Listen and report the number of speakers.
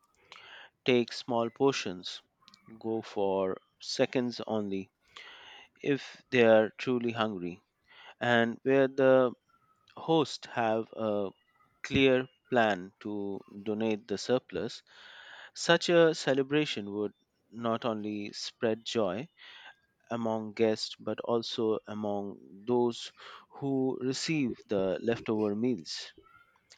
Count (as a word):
one